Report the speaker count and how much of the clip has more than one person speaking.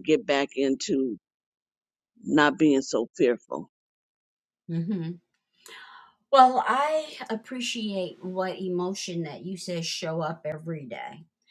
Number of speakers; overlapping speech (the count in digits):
2, no overlap